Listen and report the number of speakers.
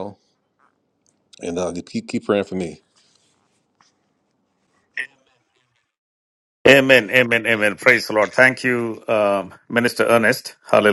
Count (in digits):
2